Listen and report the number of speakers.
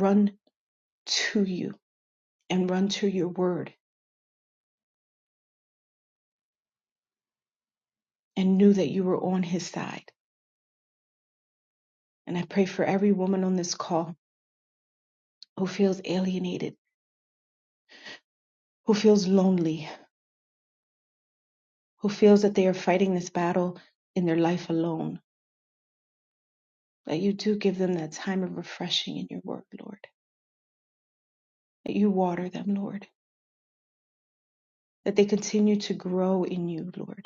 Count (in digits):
1